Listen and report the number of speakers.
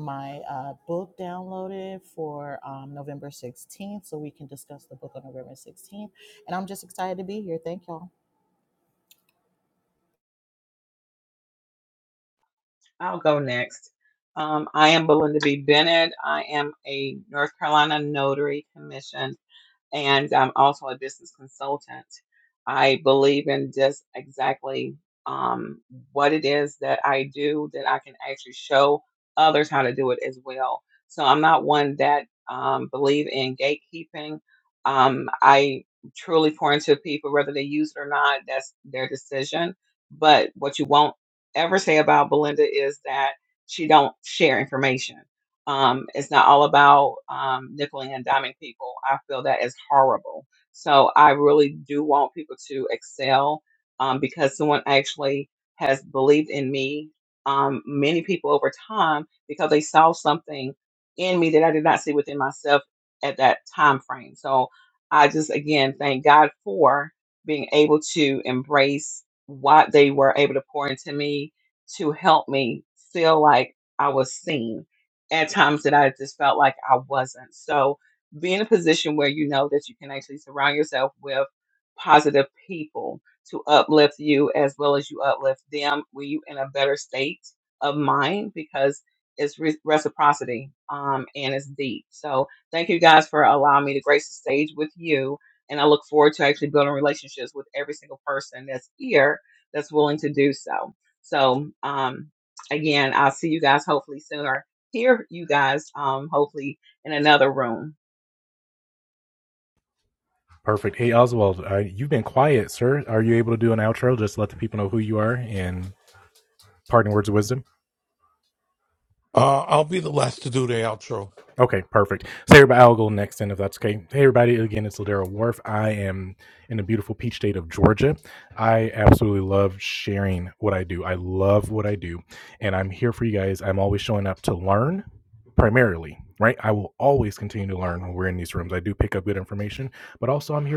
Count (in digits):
4